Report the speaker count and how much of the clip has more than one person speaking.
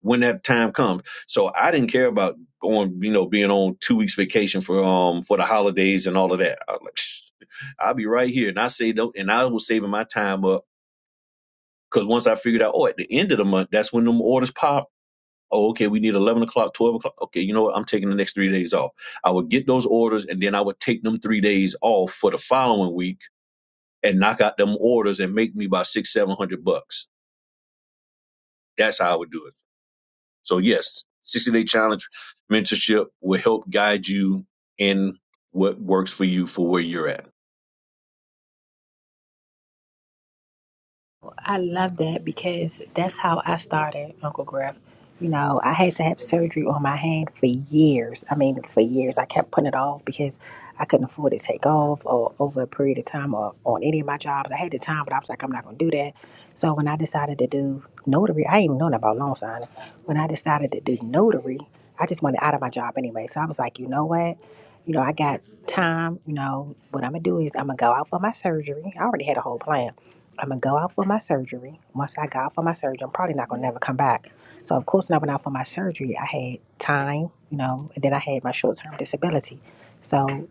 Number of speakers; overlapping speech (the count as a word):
two, no overlap